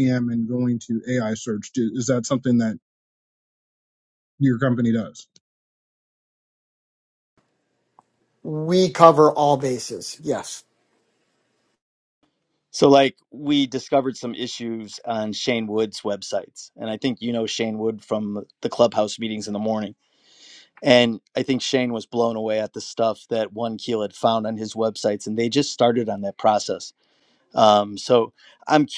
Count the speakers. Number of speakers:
three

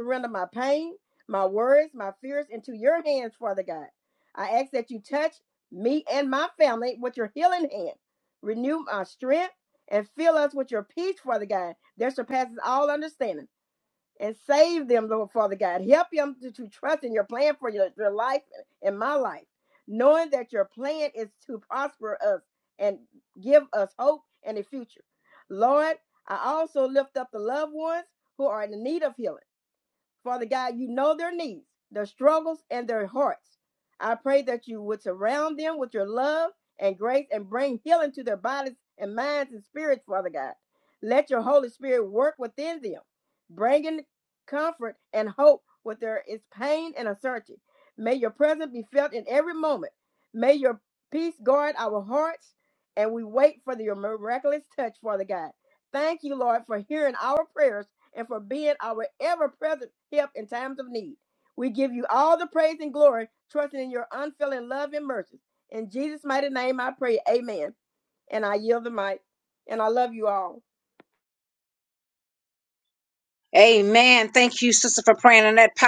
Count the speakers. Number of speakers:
two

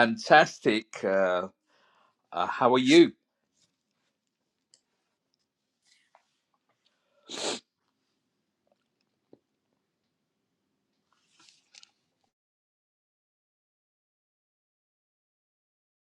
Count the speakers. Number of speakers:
one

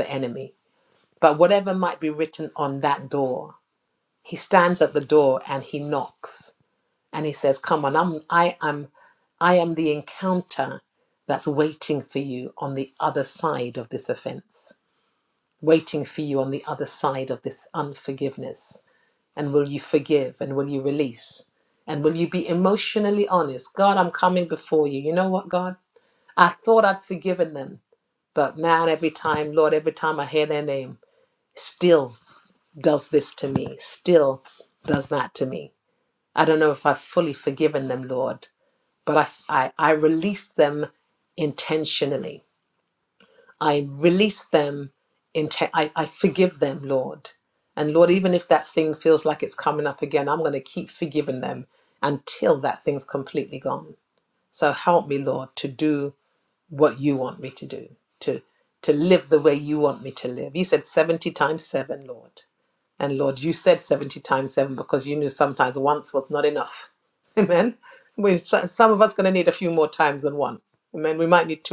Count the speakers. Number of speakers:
one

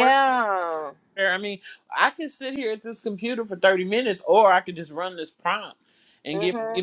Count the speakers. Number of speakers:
two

